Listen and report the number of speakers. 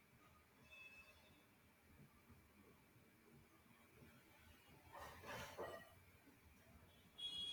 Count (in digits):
0